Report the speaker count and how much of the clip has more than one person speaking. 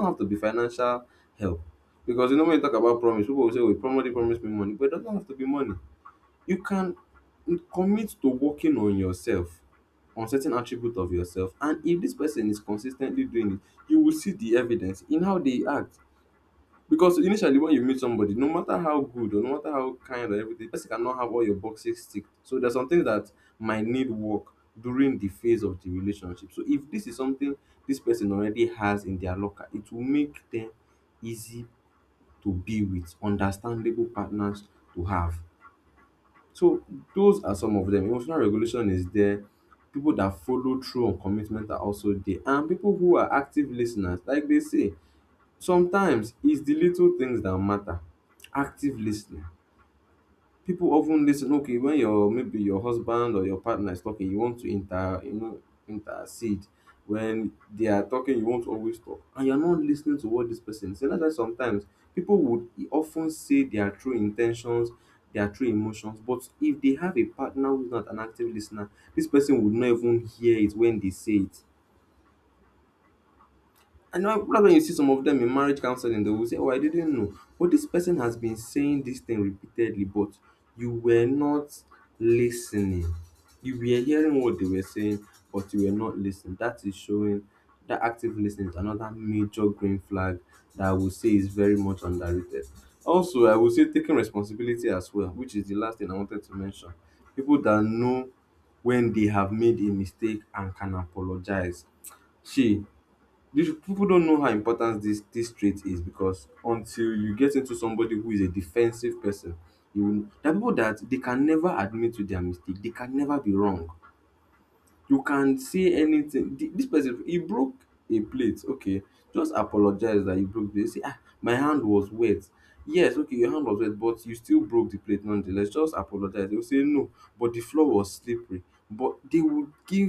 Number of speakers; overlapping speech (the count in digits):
1, no overlap